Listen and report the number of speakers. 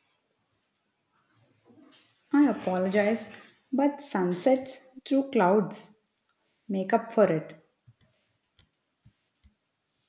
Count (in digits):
1